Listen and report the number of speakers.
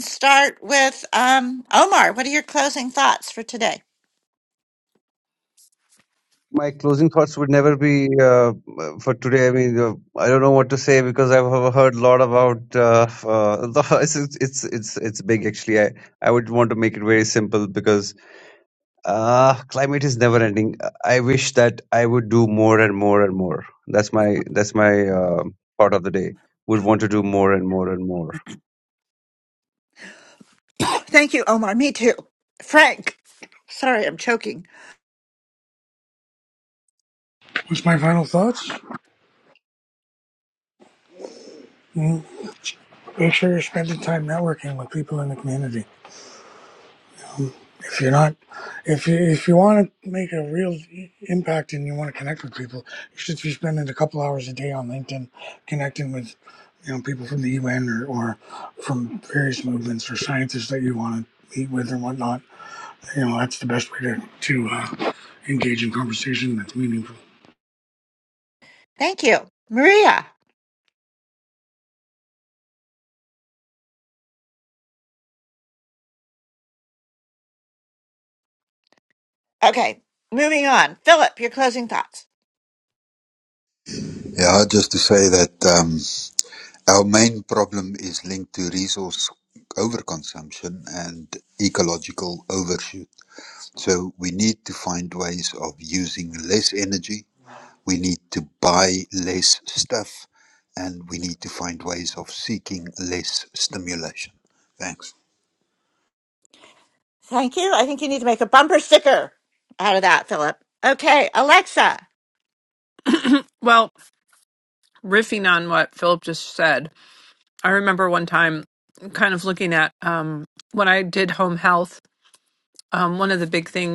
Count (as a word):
five